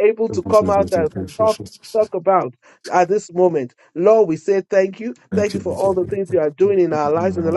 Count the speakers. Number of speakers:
one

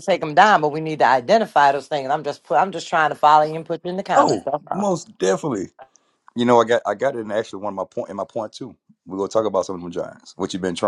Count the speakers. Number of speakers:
two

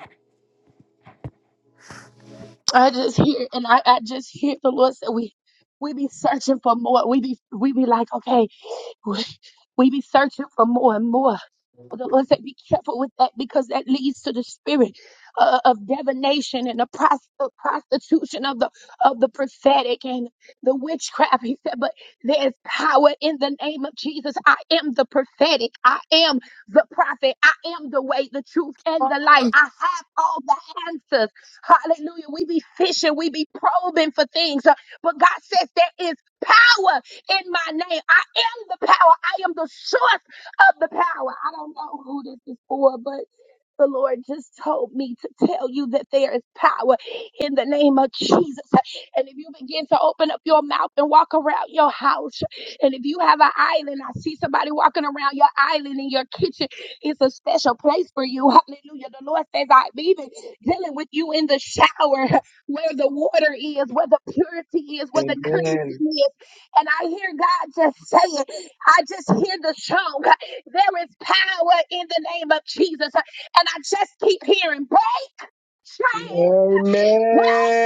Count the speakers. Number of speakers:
two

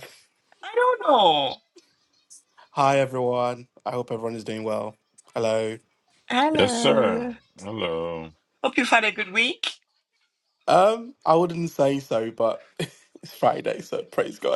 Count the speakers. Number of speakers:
three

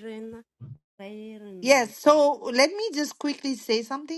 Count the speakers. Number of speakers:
two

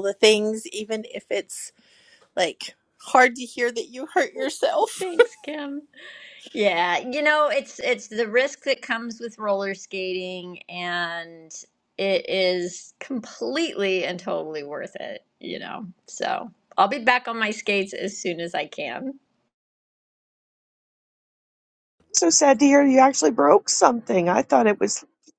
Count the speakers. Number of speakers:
three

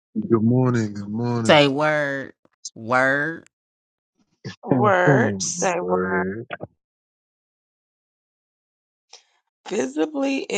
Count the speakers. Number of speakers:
three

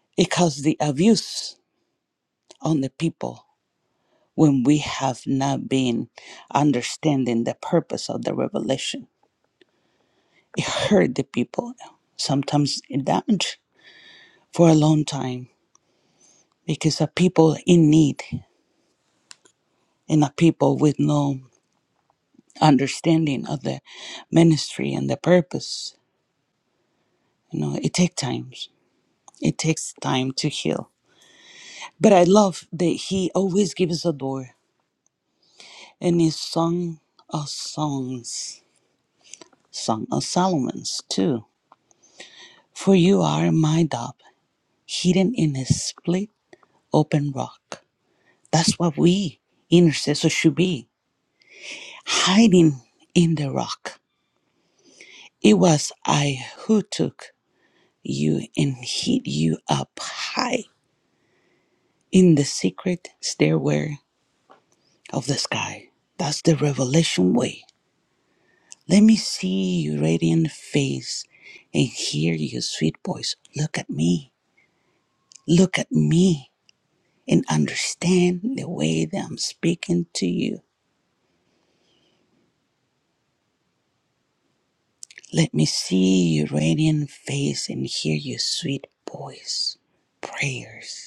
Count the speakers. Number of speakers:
one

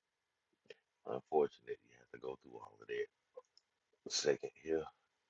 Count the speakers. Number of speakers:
one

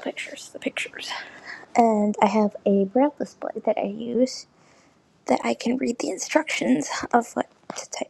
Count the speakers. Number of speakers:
one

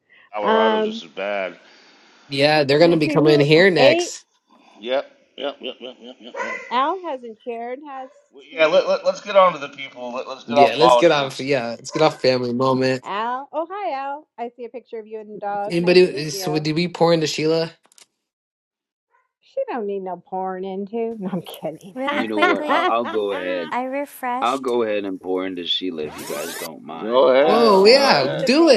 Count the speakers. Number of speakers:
five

